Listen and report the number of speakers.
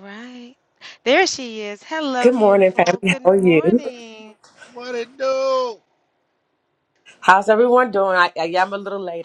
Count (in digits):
3